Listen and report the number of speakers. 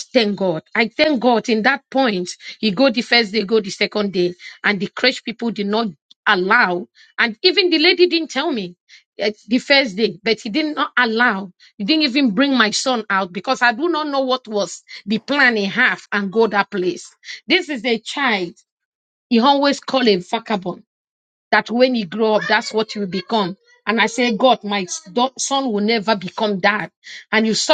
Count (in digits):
1